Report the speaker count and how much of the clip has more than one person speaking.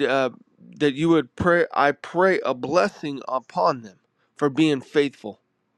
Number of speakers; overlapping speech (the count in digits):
1, no overlap